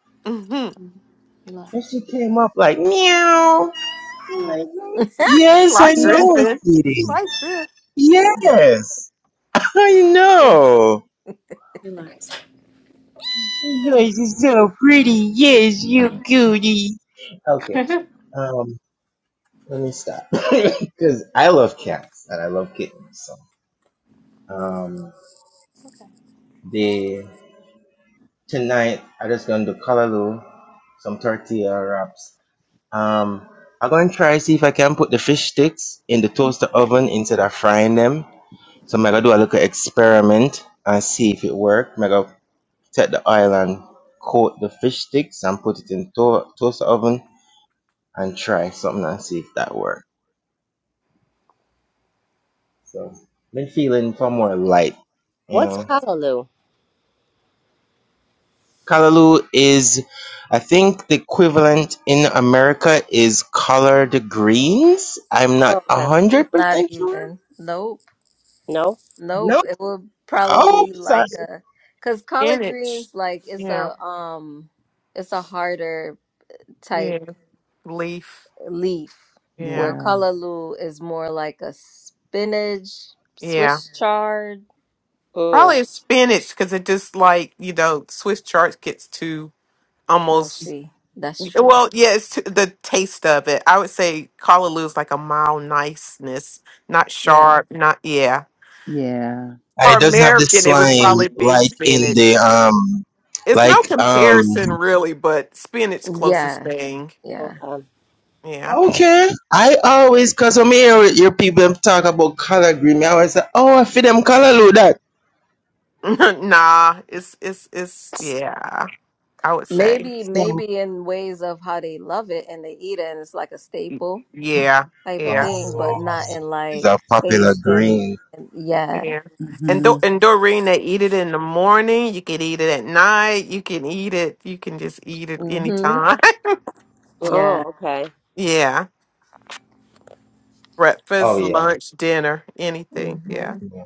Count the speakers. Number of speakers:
six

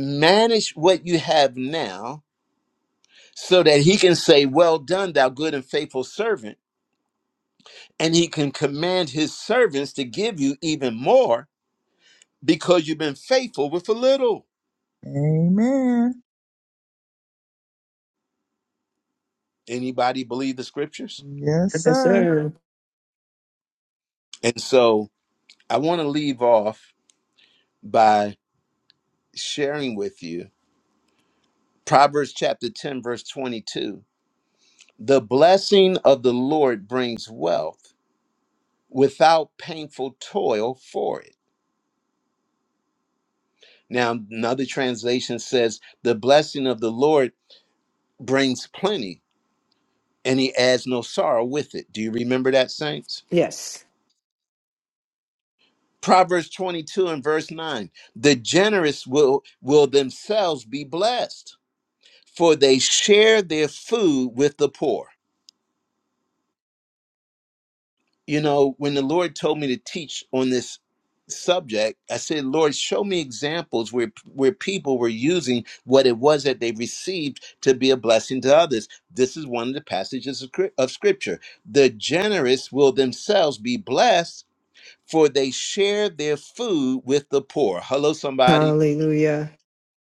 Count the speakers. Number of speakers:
three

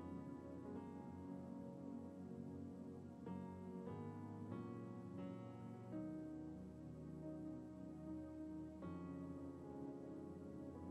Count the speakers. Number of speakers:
zero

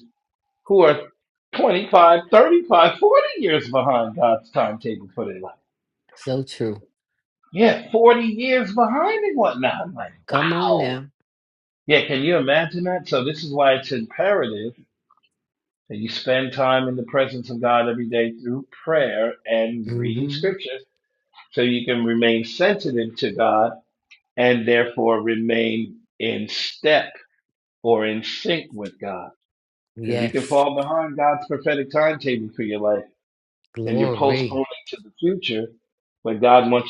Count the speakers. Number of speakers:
two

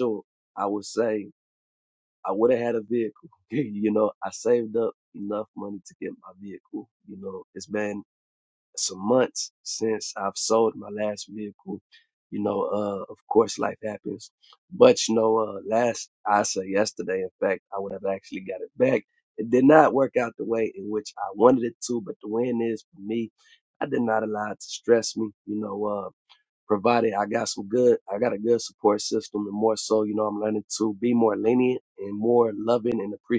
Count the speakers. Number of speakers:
one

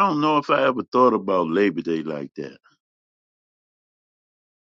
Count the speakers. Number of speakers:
one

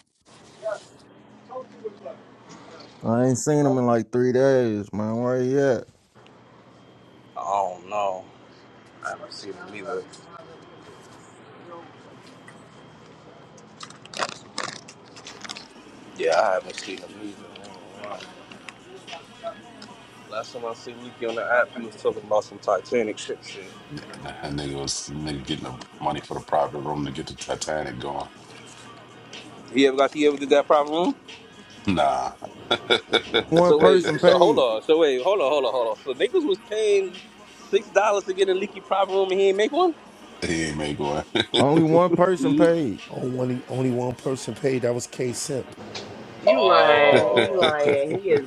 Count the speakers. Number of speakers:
five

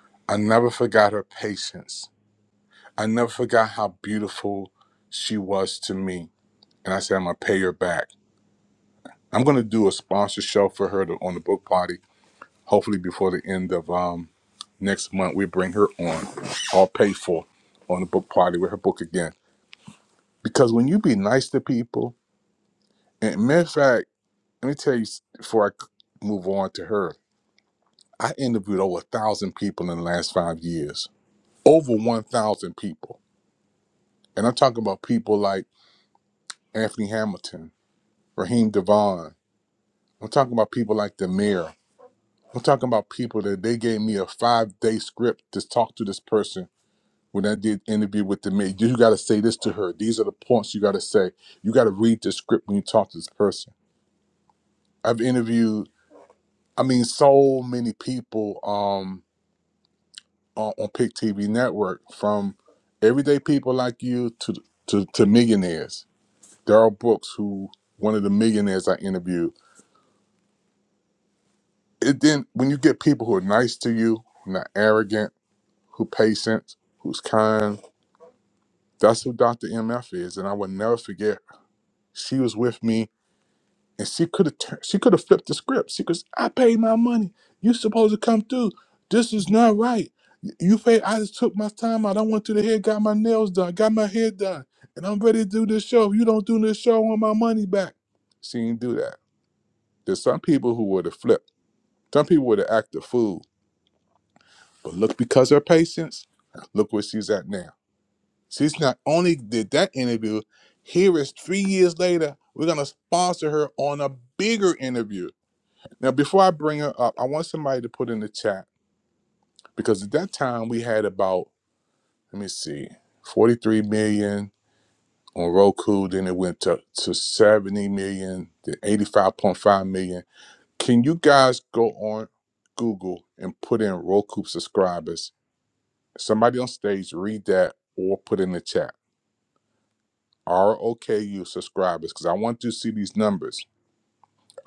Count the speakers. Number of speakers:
one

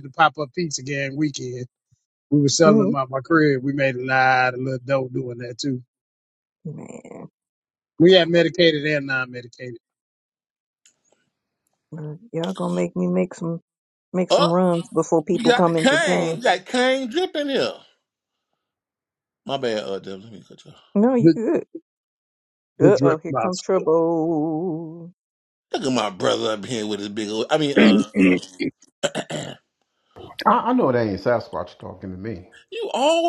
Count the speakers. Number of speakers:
four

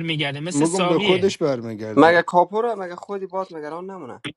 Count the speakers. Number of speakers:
three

